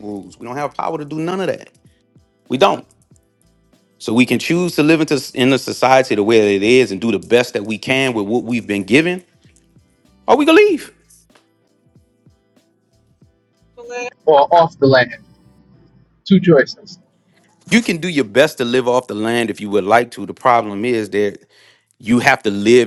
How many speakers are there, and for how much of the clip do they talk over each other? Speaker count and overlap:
two, no overlap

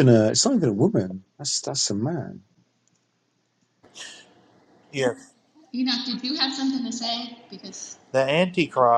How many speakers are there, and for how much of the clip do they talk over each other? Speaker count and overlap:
three, no overlap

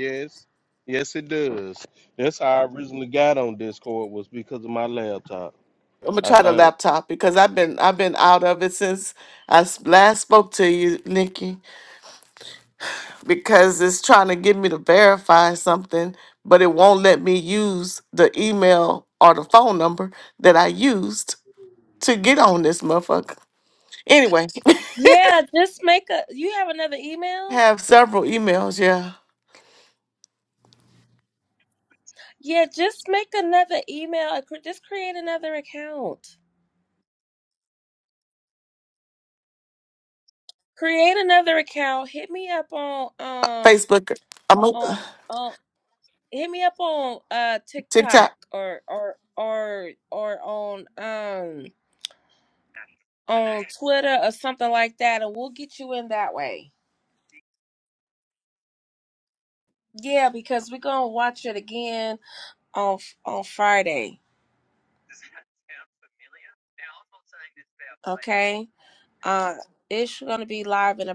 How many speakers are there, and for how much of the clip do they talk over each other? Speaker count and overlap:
three, about 2%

